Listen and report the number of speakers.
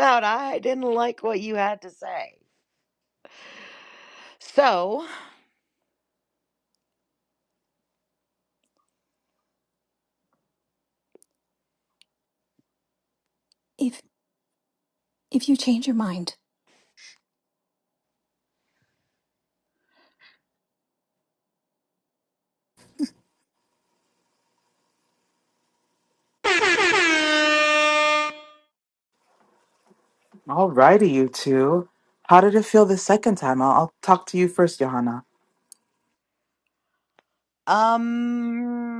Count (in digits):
3